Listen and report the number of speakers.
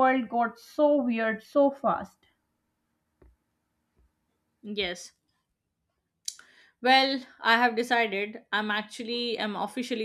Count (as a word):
two